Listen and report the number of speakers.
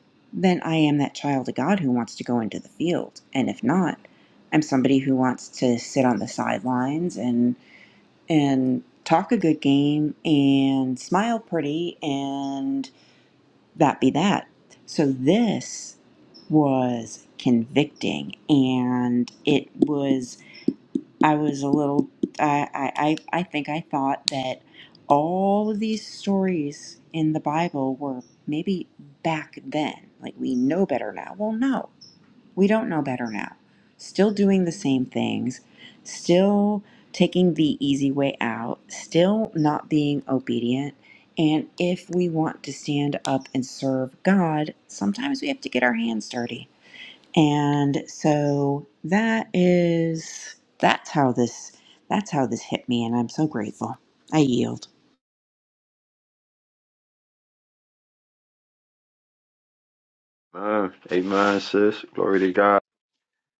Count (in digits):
2